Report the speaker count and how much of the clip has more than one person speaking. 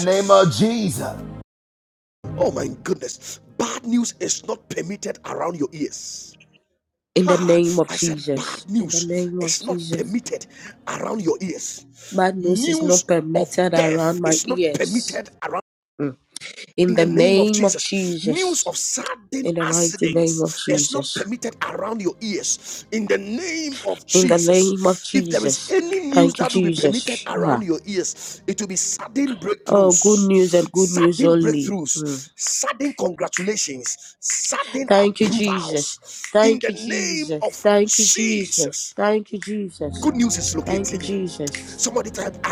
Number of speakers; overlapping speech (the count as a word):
three, about 43%